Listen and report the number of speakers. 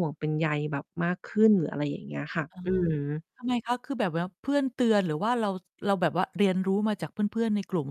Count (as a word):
two